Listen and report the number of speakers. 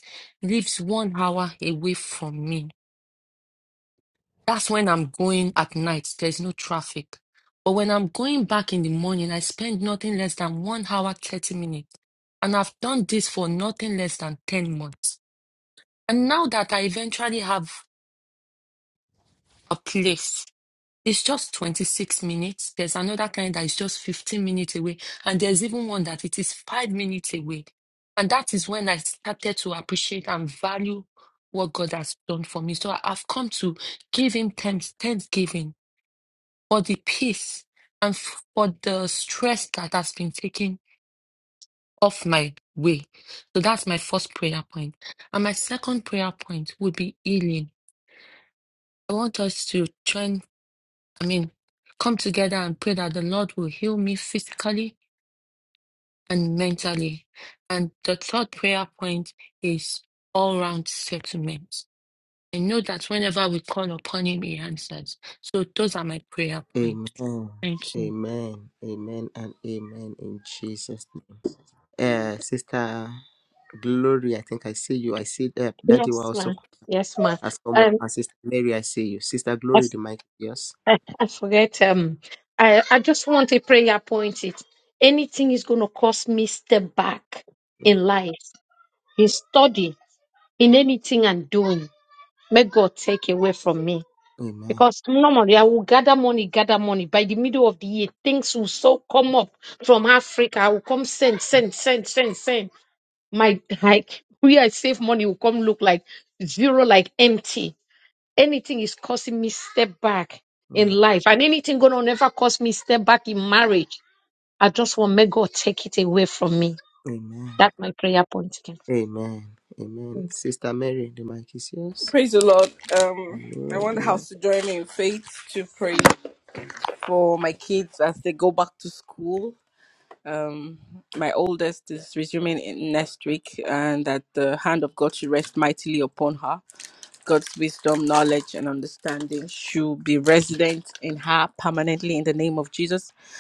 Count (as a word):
four